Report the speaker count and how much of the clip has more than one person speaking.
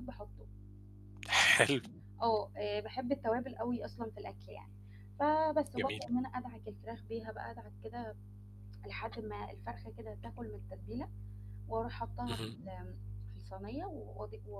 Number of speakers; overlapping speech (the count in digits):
2, about 4%